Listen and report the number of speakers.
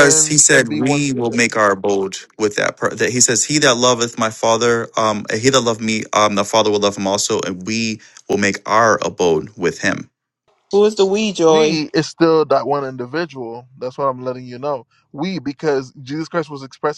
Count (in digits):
3